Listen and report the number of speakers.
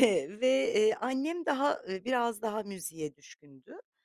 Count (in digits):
1